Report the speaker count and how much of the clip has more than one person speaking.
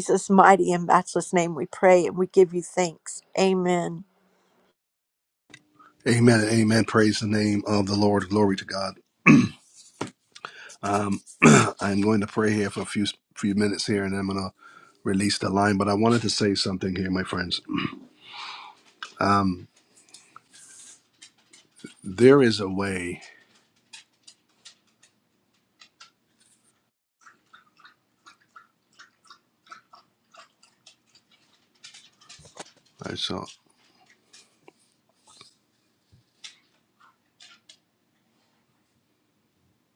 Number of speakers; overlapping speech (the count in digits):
2, no overlap